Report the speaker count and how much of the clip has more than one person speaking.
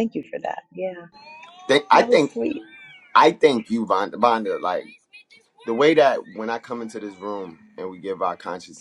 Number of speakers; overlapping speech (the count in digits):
2, about 5%